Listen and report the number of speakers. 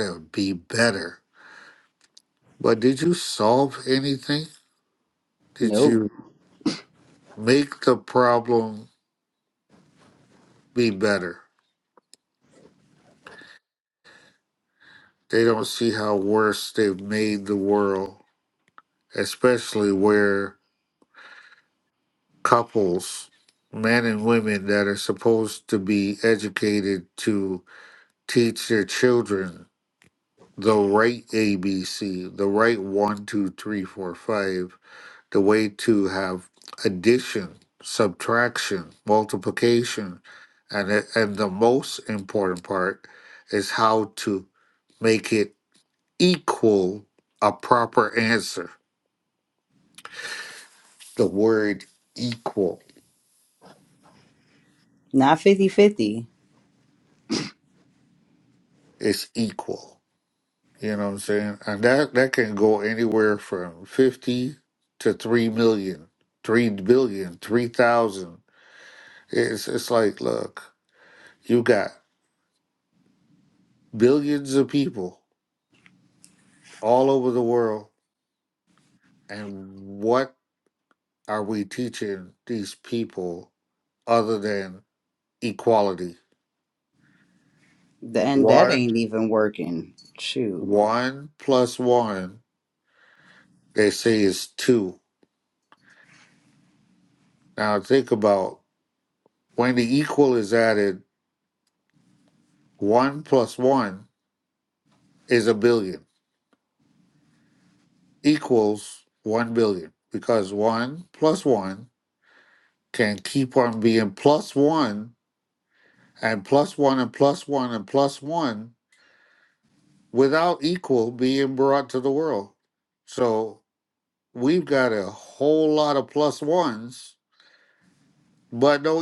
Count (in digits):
2